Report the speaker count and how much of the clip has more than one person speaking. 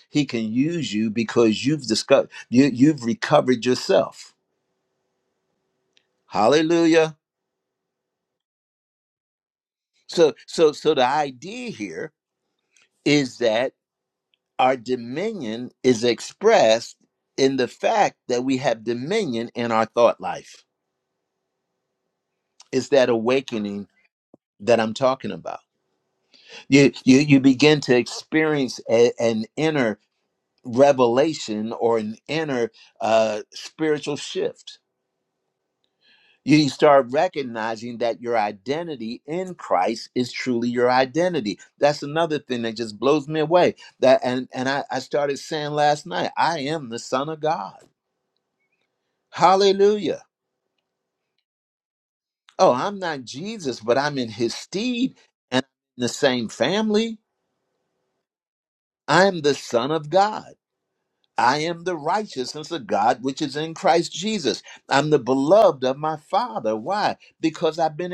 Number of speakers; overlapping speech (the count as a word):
one, no overlap